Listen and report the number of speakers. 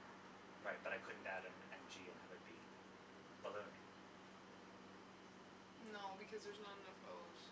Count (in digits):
2